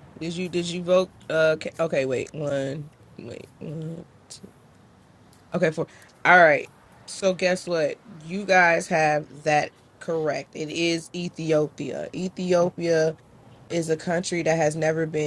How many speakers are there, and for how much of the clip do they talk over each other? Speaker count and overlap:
1, no overlap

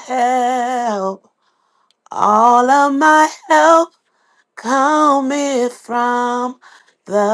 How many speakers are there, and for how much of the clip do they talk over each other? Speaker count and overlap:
1, no overlap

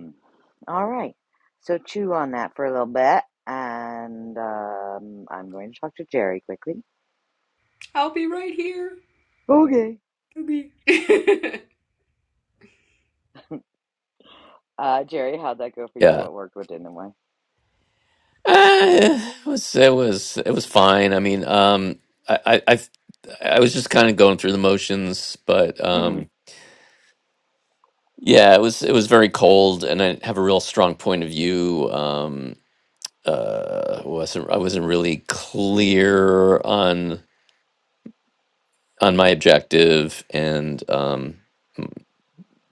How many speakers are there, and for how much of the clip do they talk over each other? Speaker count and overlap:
3, about 1%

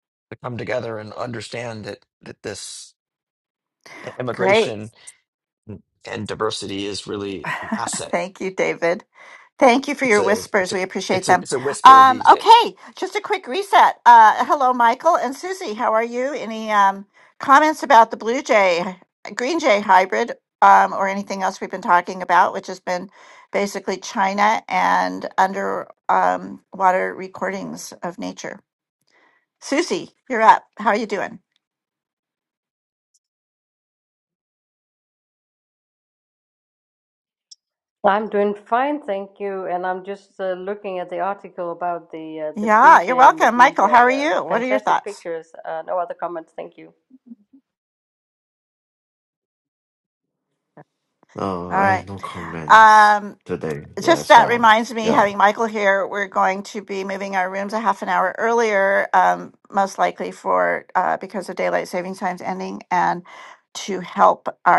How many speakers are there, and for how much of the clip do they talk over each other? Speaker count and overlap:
4, about 10%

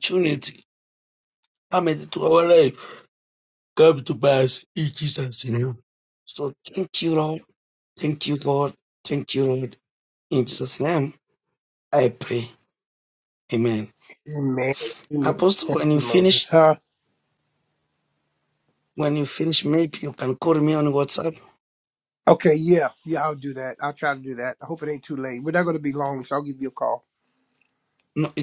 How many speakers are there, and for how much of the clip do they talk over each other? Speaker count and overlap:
2, about 2%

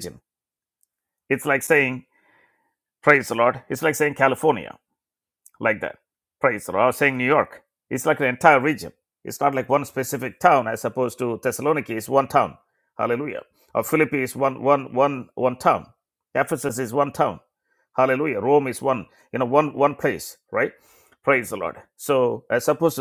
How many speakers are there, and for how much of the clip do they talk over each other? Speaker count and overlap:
1, no overlap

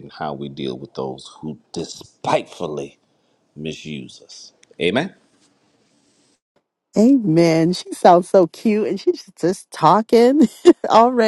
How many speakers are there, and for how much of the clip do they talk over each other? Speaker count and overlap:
2, no overlap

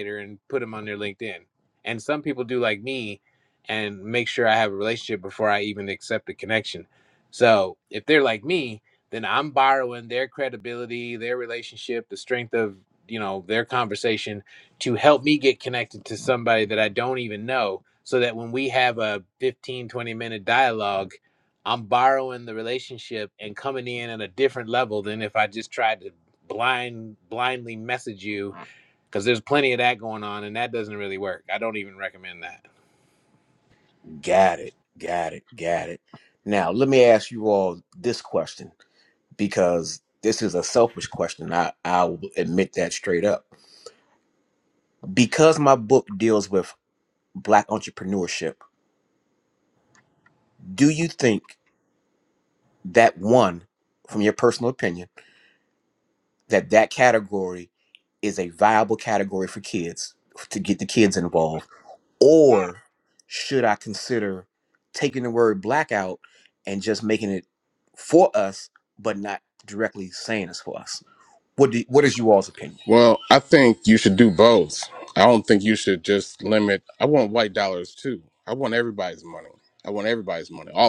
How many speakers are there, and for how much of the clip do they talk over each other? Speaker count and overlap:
3, no overlap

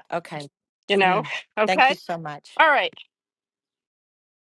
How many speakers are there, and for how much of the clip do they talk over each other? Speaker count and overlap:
2, about 12%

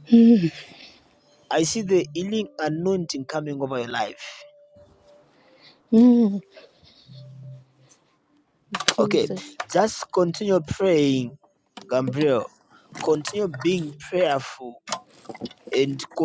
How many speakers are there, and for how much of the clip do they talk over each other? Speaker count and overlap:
2, about 2%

